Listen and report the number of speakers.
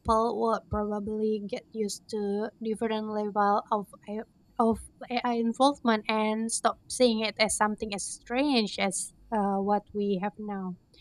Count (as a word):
one